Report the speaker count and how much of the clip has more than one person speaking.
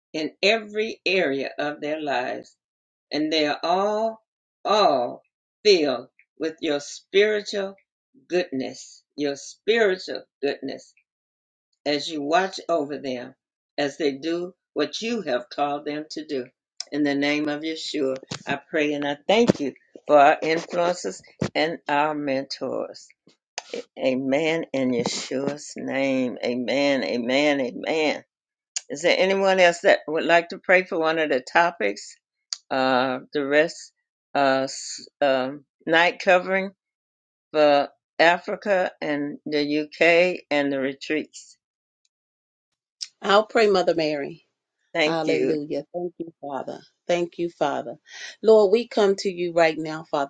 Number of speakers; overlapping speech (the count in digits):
2, about 1%